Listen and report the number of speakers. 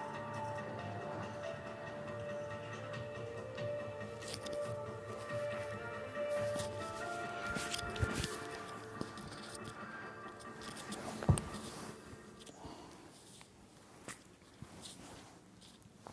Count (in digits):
0